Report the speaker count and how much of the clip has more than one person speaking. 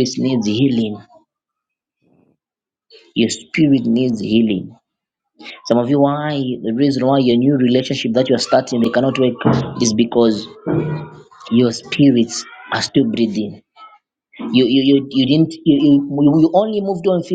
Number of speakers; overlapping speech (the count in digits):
1, no overlap